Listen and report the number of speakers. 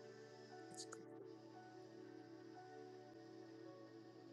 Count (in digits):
0